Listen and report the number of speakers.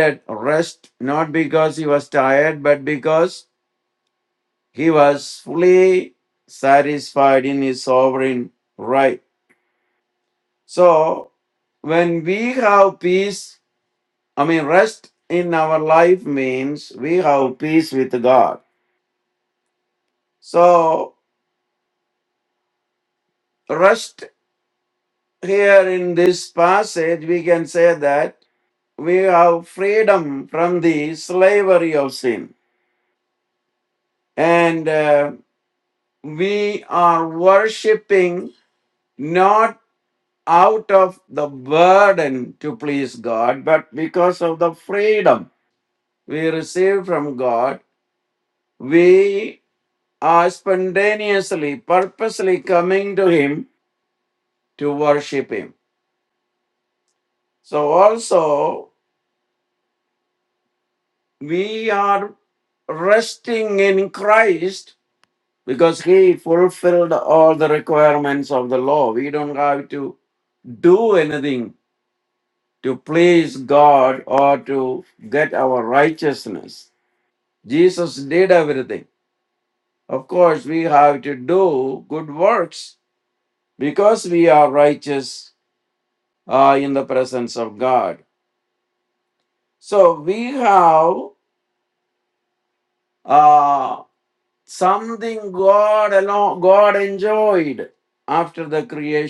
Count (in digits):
1